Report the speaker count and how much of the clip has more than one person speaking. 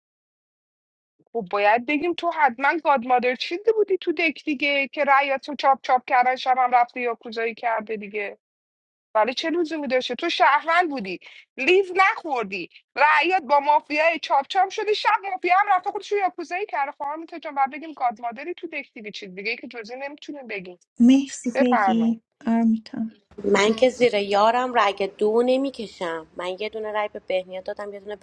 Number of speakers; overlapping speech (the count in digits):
3, about 2%